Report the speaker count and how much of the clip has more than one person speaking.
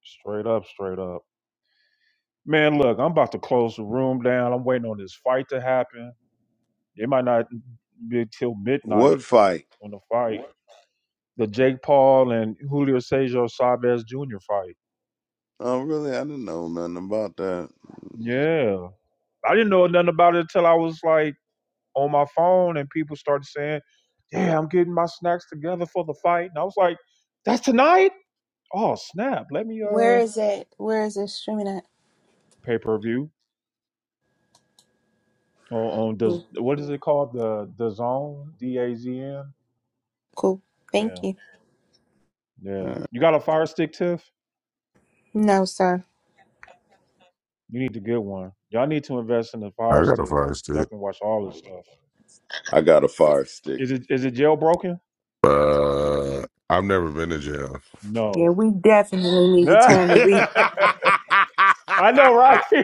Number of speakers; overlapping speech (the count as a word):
four, about 4%